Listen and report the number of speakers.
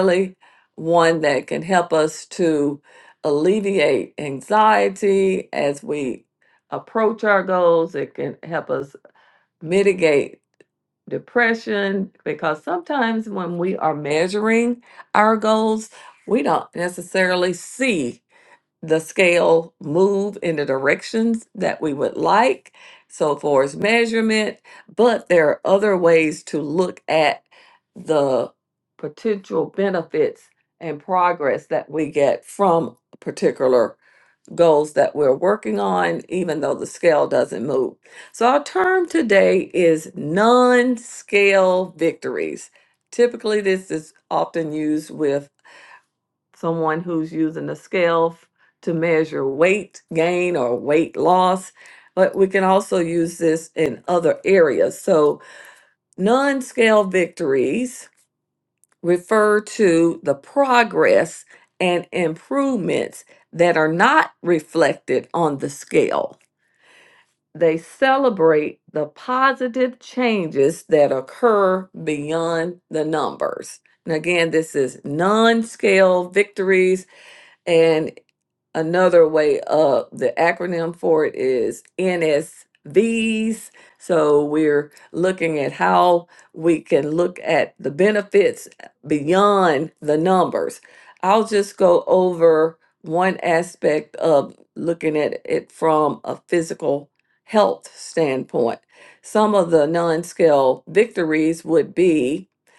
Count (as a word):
one